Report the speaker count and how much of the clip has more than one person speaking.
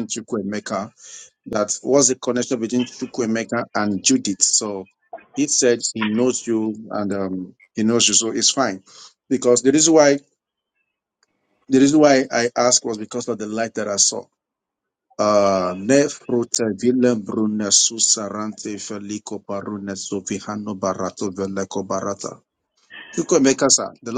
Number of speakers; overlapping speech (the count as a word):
one, no overlap